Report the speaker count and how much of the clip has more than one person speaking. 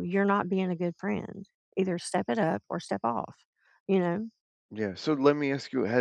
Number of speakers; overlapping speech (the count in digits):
2, no overlap